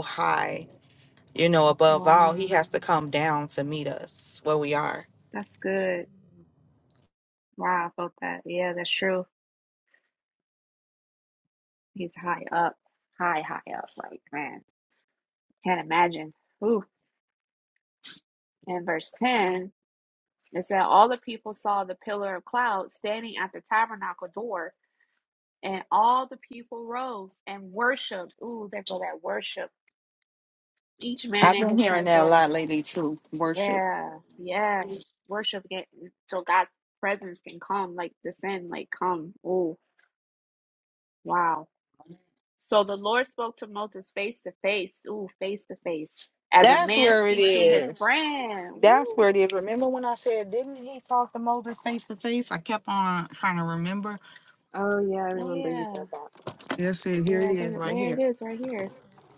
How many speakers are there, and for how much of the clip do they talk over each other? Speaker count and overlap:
3, about 9%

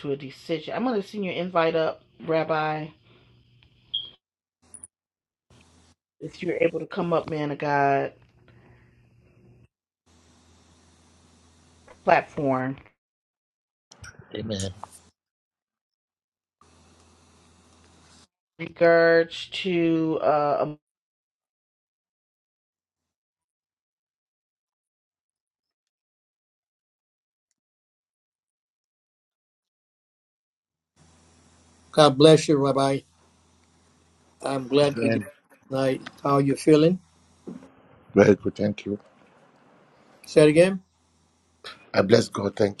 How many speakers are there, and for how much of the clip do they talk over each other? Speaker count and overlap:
3, about 1%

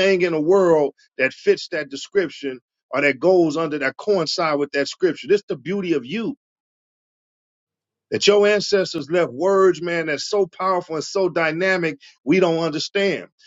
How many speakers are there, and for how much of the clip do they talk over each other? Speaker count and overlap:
1, no overlap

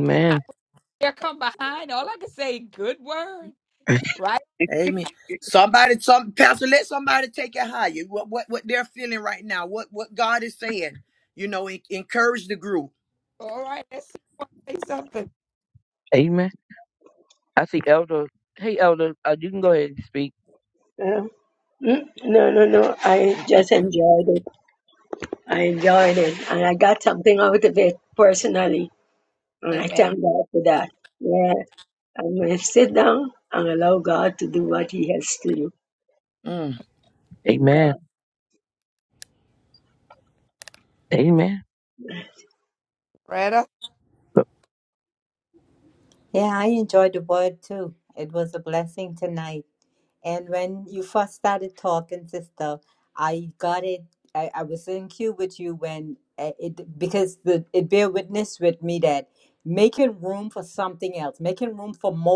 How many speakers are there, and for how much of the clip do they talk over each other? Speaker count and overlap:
5, about 1%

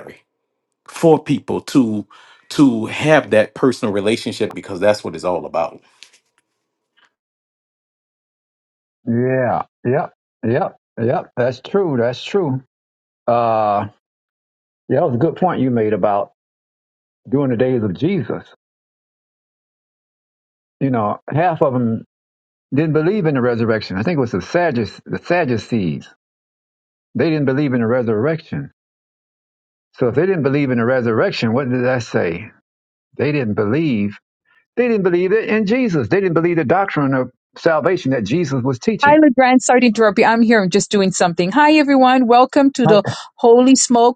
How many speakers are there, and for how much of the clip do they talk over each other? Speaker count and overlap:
3, about 1%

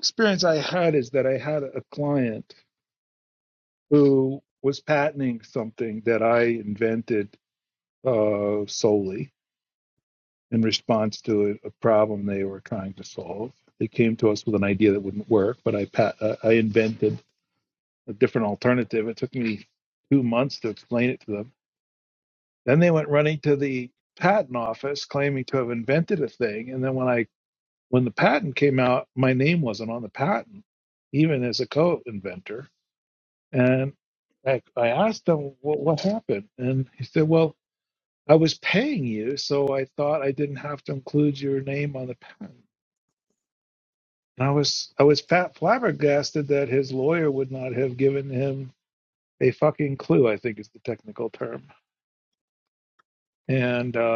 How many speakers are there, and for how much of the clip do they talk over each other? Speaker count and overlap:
1, no overlap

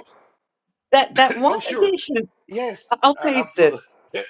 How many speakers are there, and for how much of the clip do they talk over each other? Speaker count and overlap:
2, about 27%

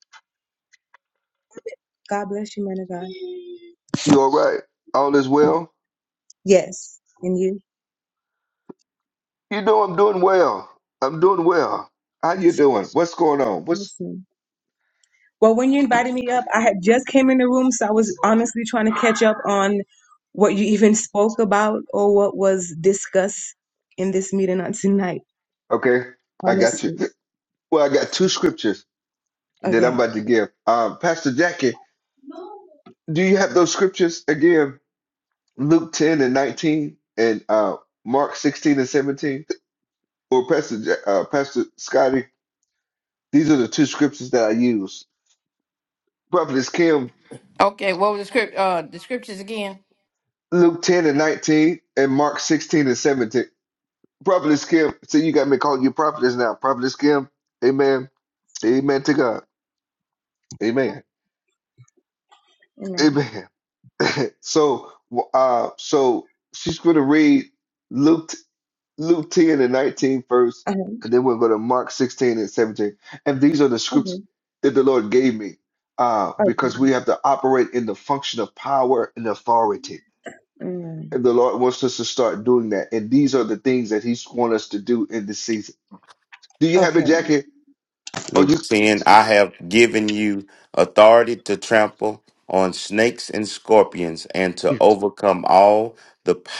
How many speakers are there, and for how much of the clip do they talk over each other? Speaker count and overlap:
4, about 3%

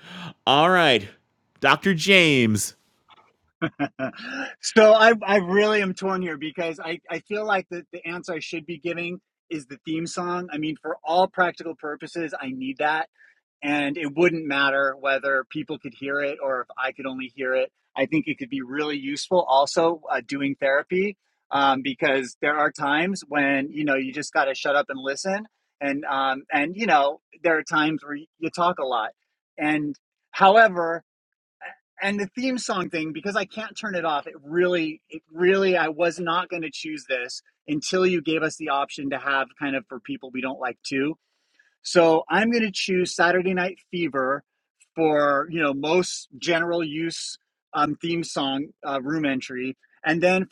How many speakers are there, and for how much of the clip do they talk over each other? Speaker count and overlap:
2, no overlap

